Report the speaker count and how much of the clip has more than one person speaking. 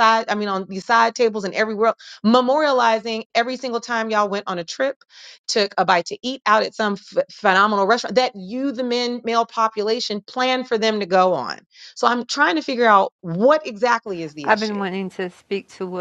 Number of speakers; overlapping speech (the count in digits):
2, about 3%